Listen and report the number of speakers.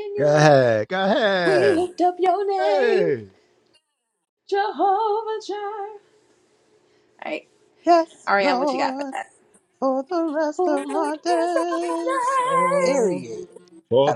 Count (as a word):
three